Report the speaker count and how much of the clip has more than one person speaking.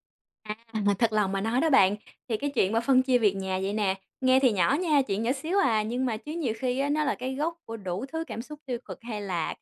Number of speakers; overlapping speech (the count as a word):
one, no overlap